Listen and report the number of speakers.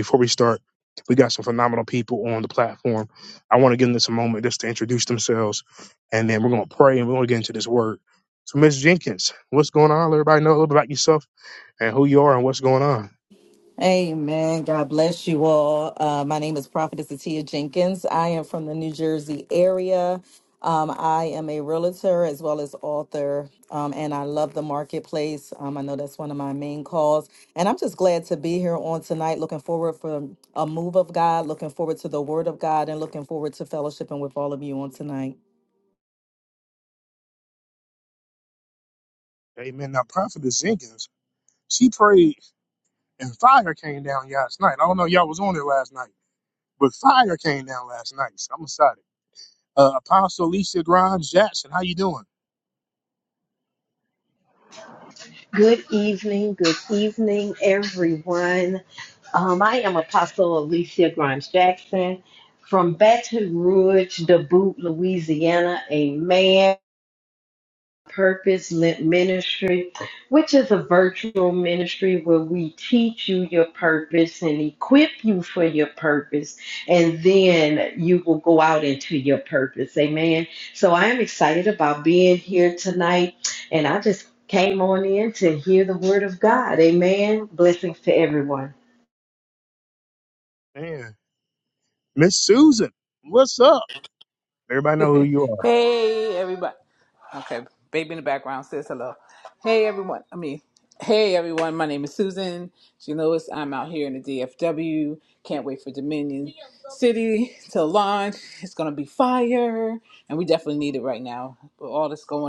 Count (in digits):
4